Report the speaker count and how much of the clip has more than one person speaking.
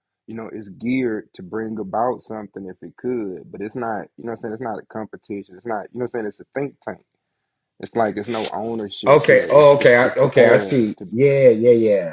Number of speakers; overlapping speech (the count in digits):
2, about 17%